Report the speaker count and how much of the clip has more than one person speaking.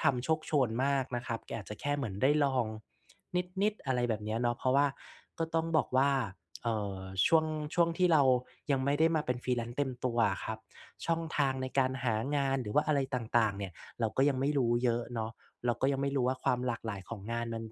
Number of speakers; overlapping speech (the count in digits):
1, no overlap